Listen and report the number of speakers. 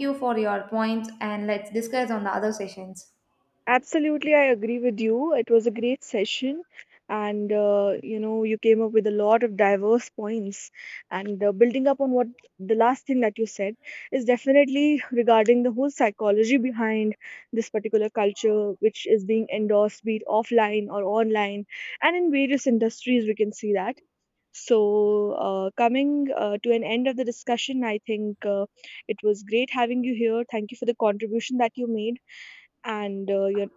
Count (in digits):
2